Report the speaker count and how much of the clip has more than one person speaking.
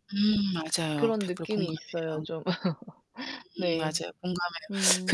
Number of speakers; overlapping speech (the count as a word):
two, about 30%